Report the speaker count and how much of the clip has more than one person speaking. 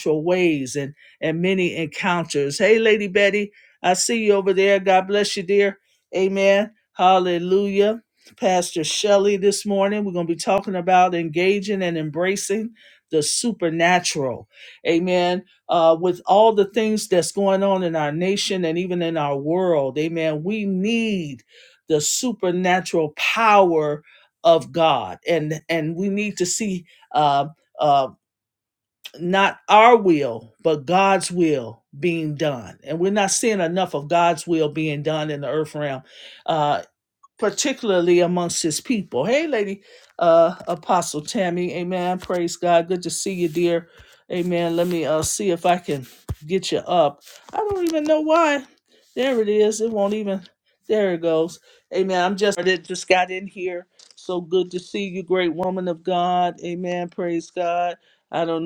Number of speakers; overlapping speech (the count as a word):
one, no overlap